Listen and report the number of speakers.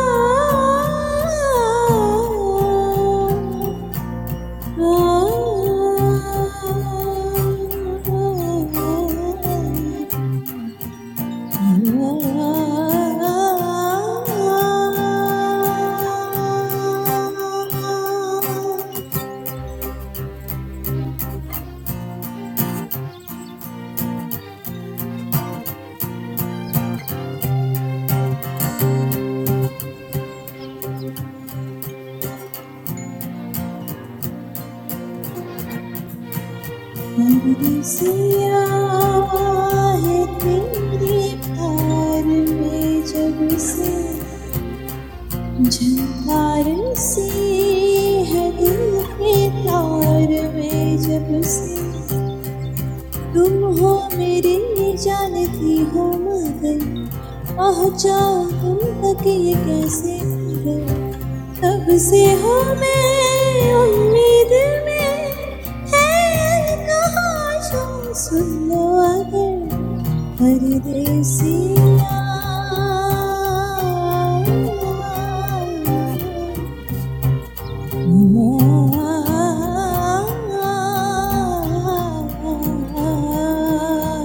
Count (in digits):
1